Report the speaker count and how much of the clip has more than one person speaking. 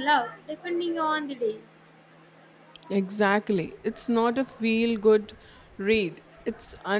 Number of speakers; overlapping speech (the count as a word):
two, no overlap